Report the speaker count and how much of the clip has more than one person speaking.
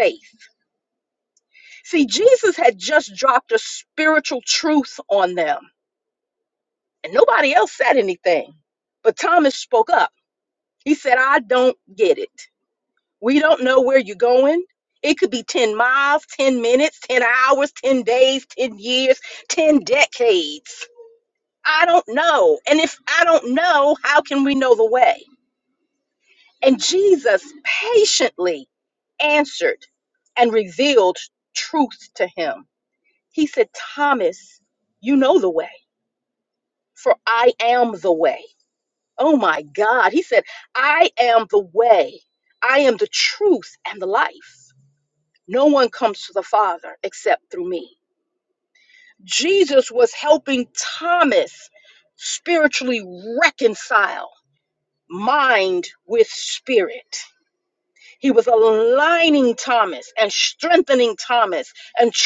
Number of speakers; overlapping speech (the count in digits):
1, no overlap